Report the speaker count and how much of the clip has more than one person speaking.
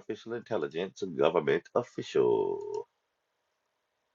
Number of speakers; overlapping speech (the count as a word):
one, no overlap